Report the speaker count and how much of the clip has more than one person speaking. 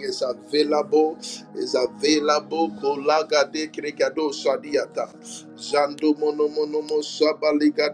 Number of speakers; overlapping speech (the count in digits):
1, no overlap